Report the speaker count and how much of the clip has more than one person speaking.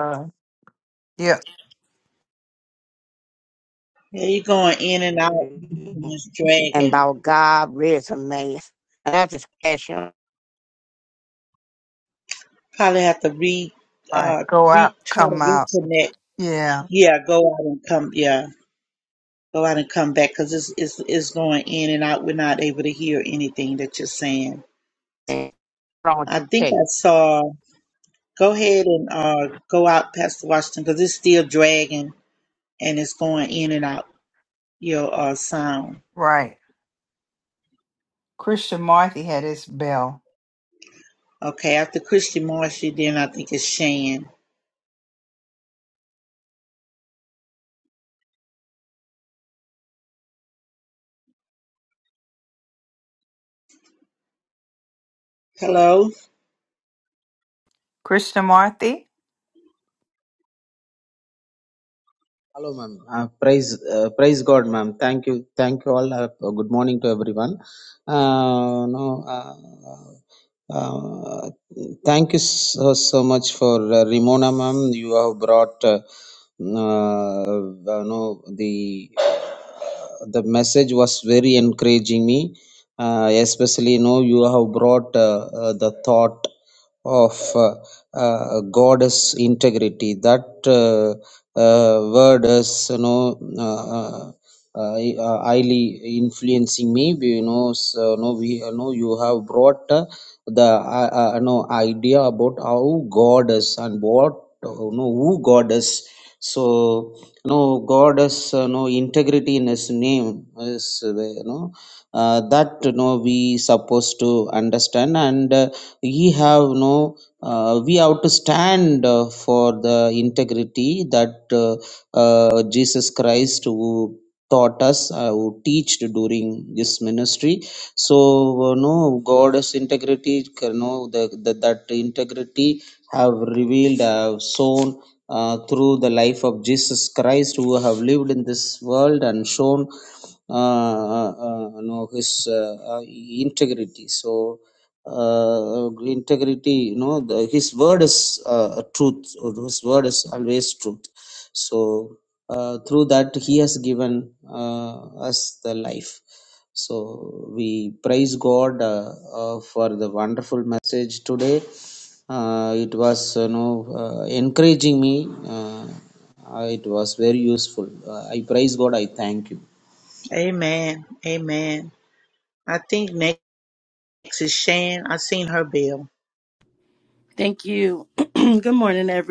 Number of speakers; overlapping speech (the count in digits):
5, about 1%